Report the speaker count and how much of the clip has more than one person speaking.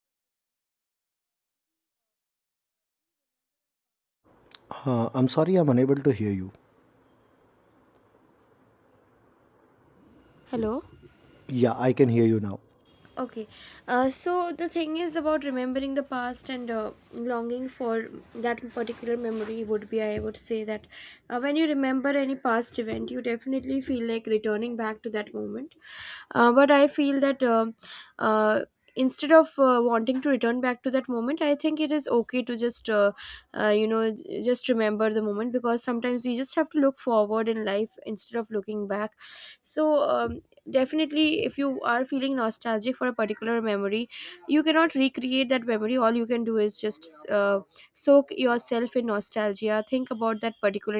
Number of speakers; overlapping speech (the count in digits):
2, no overlap